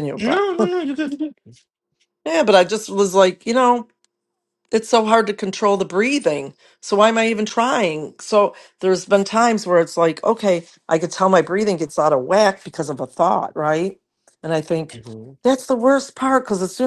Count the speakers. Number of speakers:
2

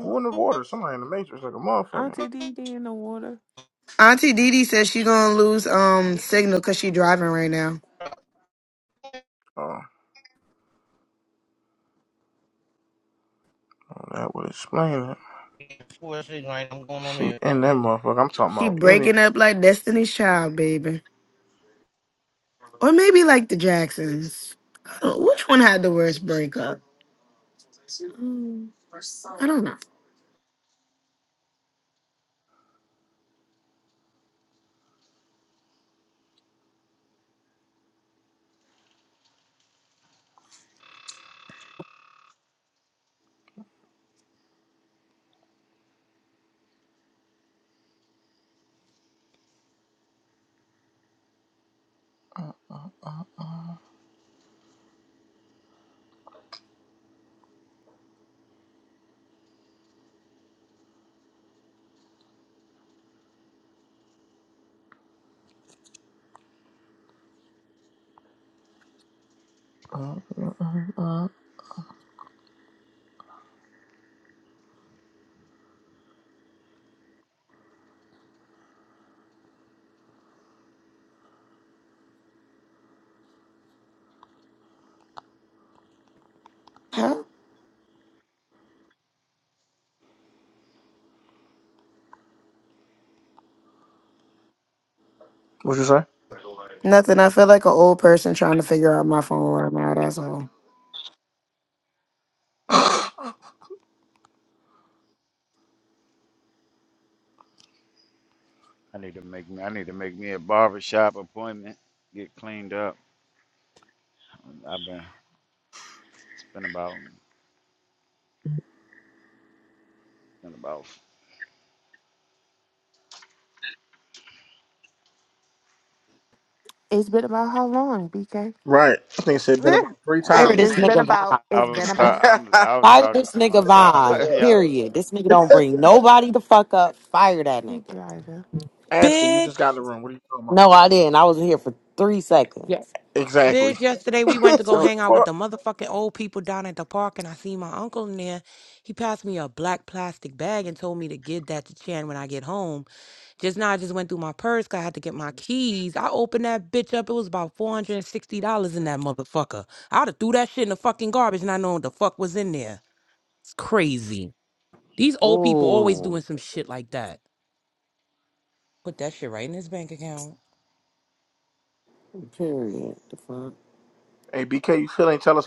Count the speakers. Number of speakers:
7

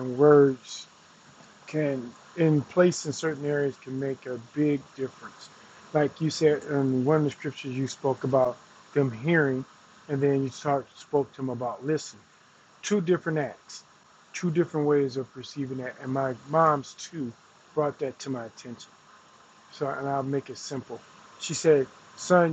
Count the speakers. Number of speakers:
1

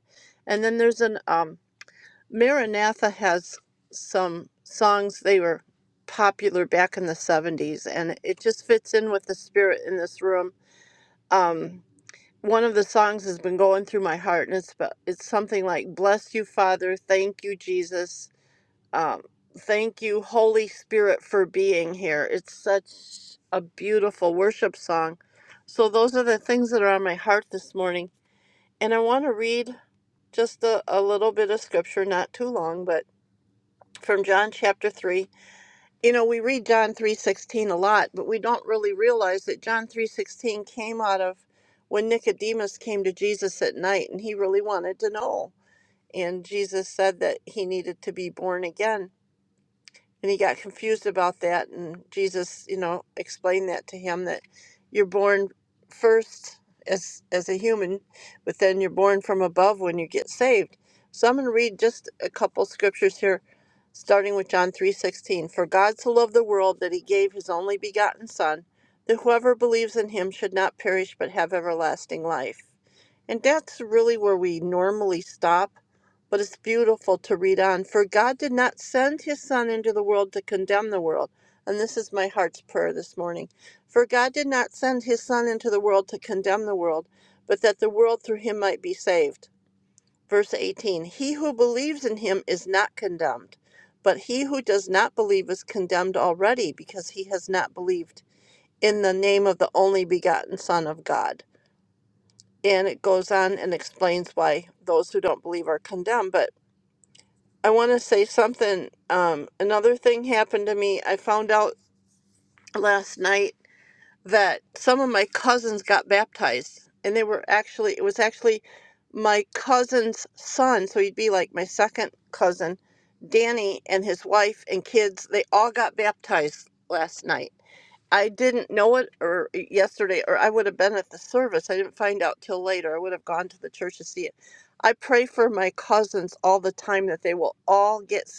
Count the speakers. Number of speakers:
1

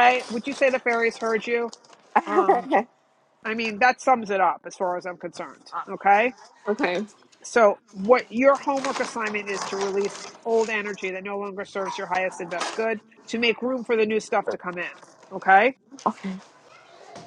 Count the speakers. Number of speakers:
2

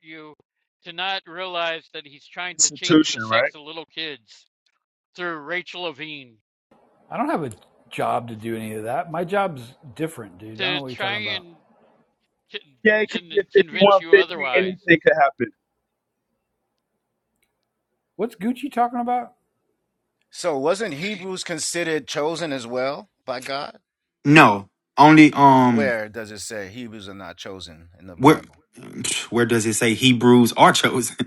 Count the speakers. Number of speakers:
5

